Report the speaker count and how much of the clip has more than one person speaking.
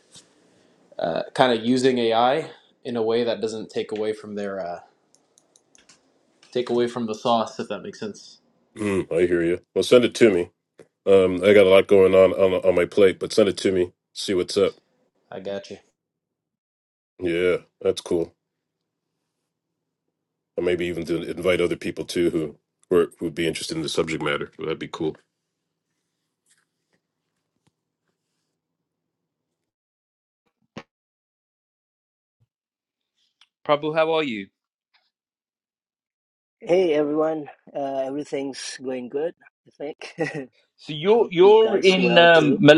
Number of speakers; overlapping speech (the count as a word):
four, about 3%